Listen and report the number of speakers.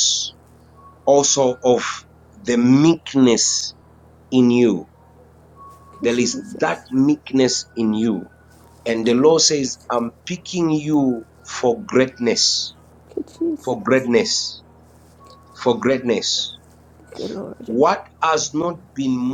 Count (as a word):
two